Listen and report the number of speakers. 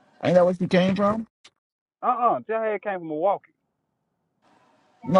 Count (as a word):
two